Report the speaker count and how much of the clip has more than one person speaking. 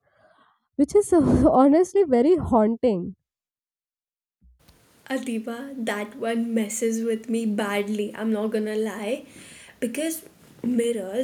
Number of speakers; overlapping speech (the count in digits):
2, no overlap